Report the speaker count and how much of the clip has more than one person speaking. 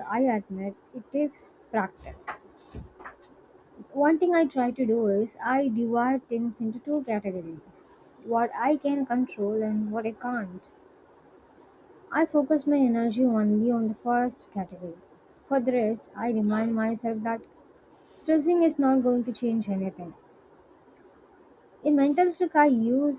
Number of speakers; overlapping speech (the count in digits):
1, no overlap